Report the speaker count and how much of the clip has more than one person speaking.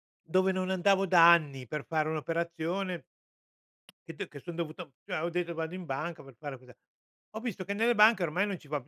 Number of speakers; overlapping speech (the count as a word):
one, no overlap